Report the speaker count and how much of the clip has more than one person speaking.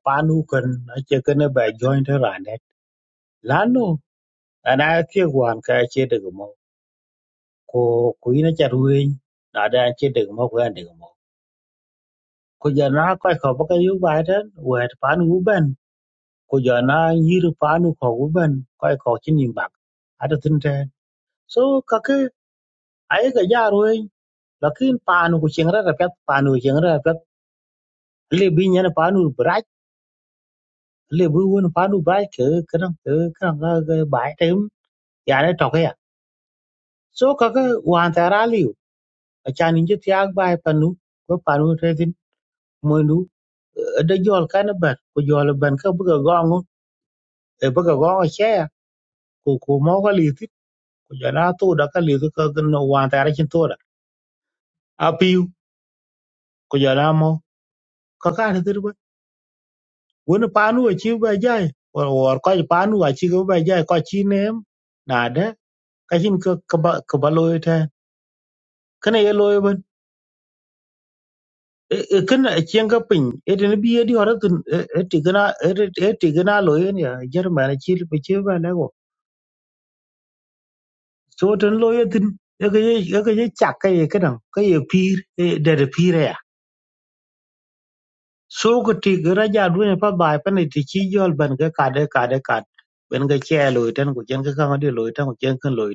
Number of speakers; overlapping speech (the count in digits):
1, no overlap